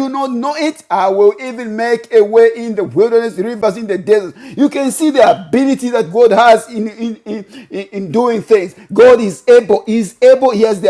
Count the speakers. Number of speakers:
1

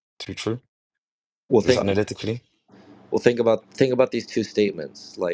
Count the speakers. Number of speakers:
2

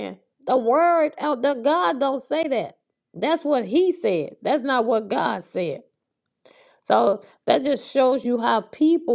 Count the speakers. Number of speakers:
1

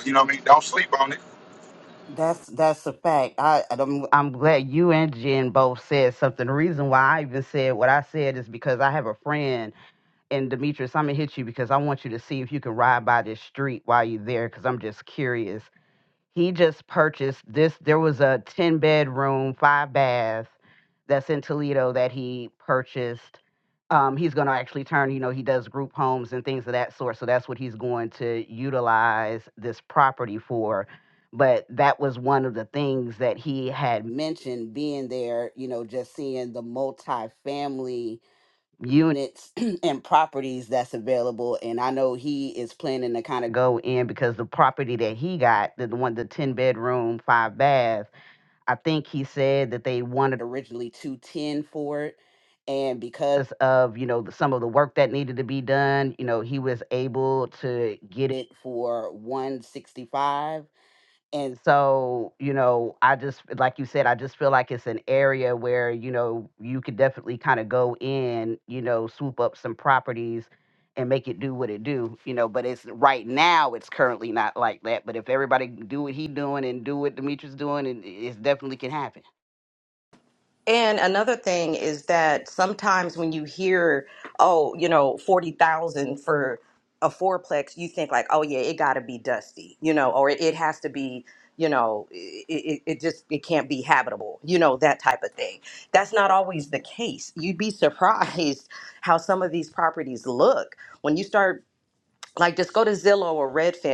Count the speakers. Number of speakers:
3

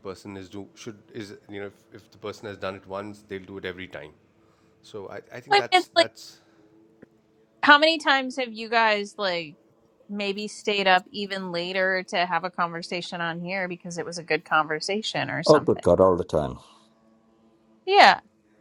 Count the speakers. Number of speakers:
3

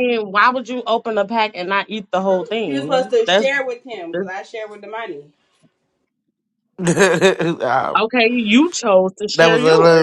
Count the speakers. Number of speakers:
3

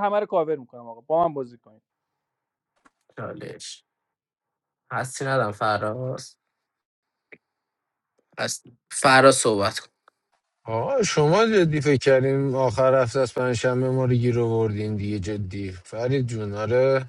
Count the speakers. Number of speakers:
3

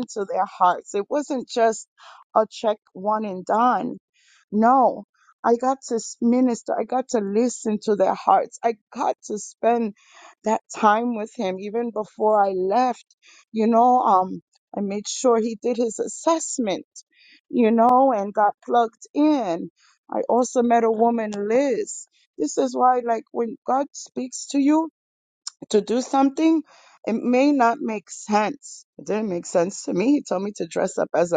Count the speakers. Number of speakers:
1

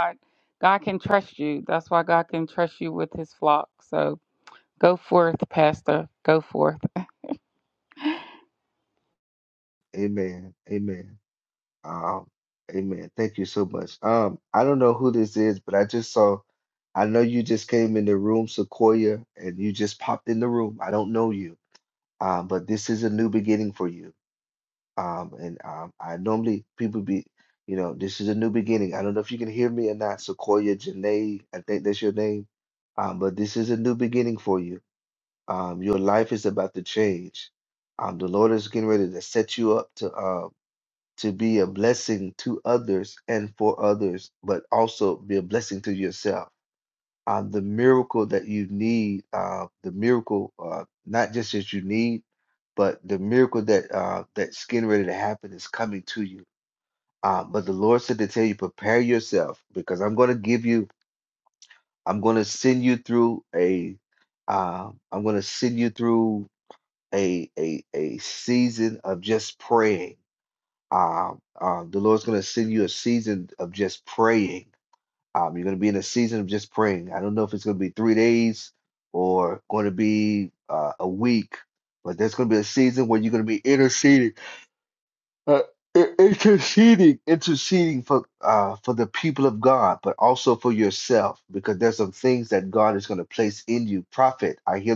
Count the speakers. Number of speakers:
2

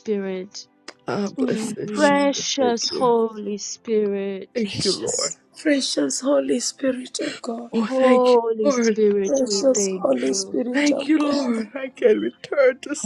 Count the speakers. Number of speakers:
3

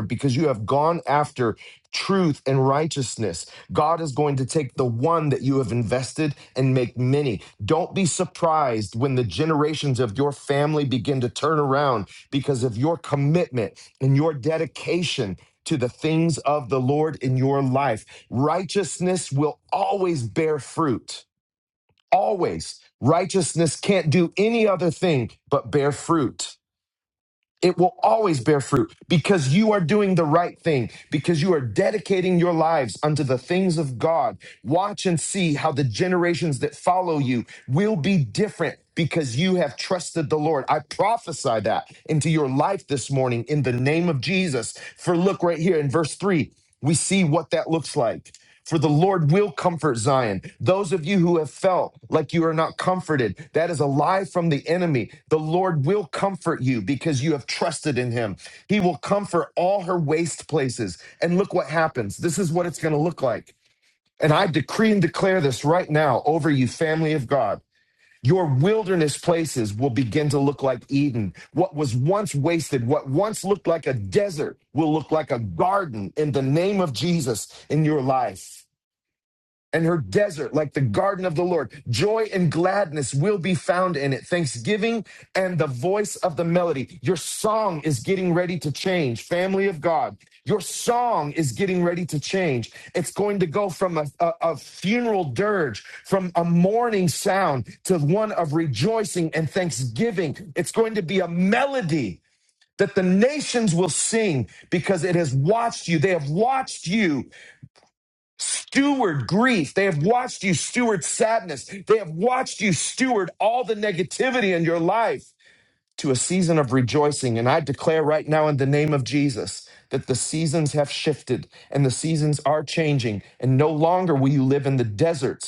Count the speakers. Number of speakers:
1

